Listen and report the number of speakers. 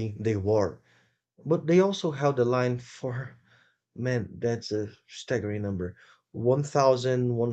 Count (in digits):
1